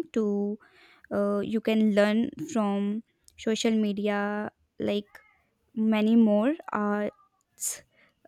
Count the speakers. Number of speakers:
one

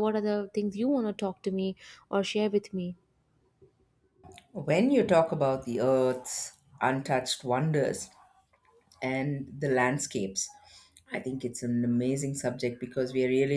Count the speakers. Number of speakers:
two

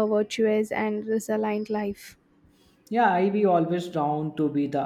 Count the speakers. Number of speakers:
two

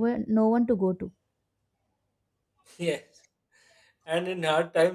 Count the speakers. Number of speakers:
two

